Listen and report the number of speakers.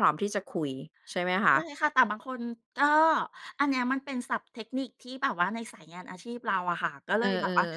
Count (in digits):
2